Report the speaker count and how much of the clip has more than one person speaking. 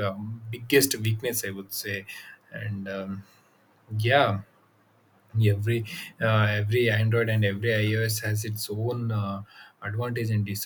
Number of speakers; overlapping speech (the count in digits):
1, no overlap